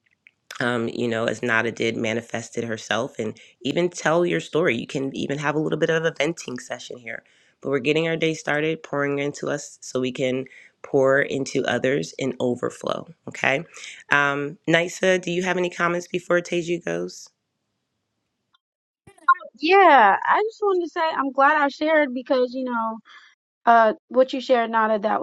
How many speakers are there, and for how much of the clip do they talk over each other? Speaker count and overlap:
two, no overlap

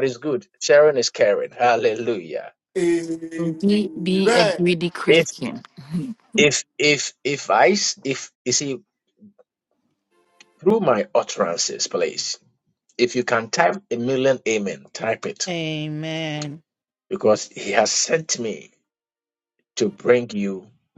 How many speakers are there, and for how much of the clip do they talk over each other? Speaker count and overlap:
four, about 2%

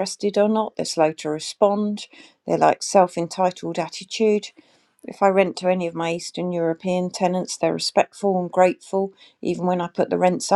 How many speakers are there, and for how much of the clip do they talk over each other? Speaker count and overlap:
one, no overlap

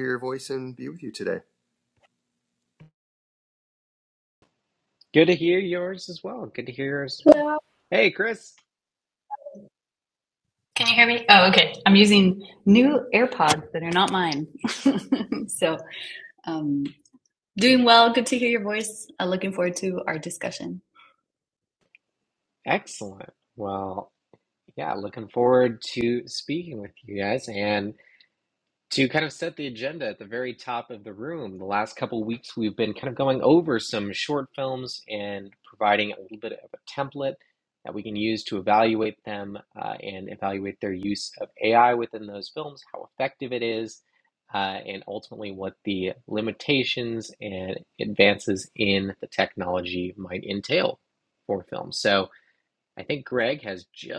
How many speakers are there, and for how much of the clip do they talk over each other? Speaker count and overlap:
three, no overlap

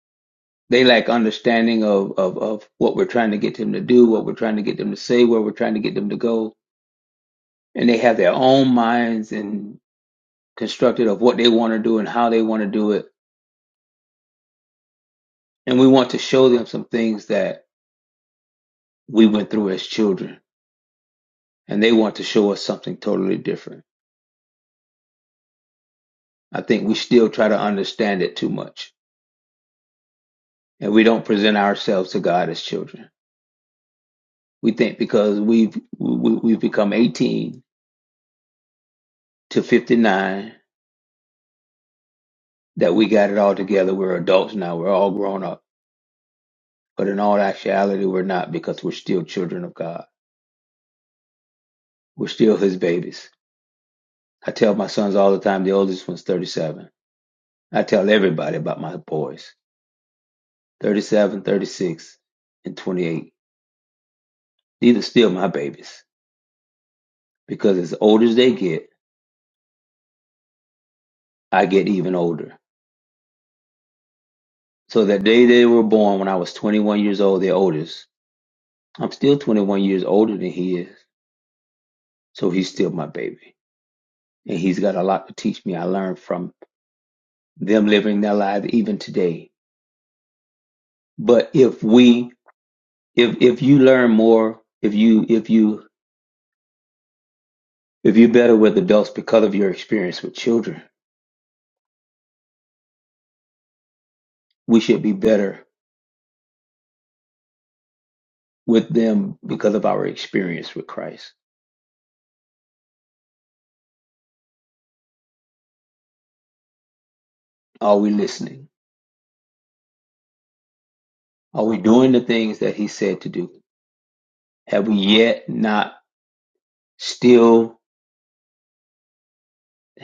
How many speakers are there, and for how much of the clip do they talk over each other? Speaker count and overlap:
one, no overlap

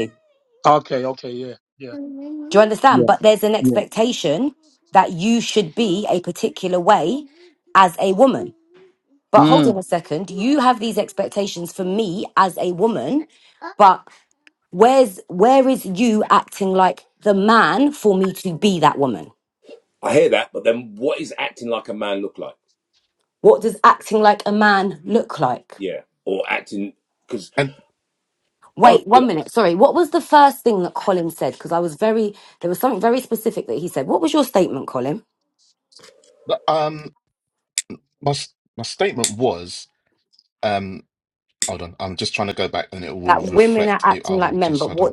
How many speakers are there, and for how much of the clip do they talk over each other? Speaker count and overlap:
four, about 6%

